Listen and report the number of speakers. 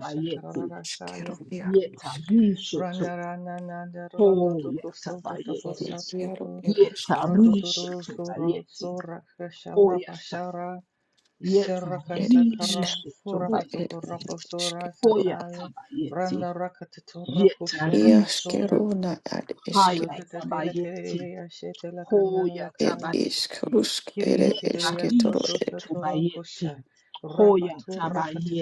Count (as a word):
three